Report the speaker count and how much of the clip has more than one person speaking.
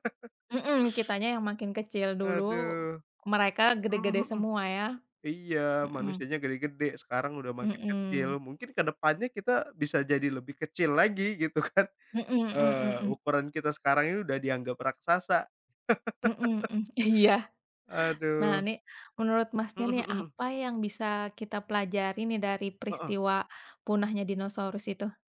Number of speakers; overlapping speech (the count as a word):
two, about 13%